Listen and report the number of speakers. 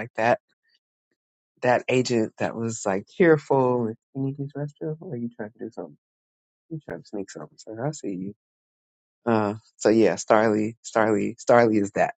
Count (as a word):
one